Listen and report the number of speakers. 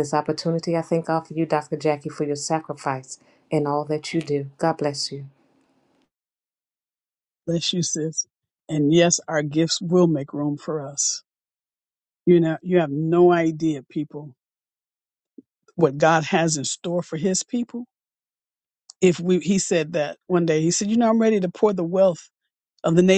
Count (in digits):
2